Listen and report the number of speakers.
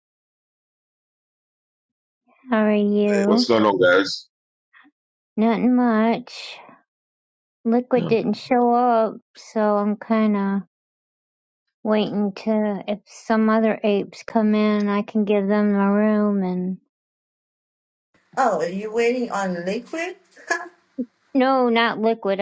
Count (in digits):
3